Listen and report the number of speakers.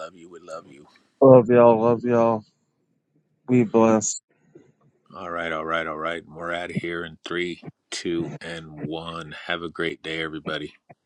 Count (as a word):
two